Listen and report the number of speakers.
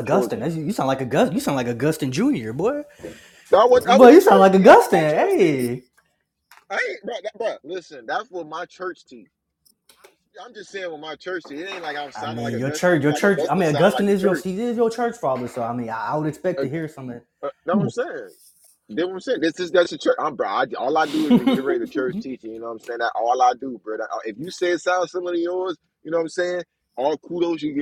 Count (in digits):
2